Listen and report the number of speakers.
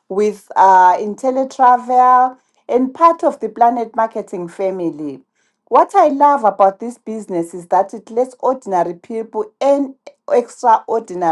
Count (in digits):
1